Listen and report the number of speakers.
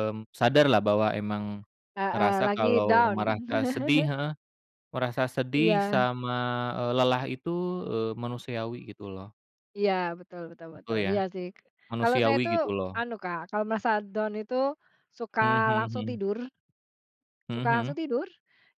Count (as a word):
two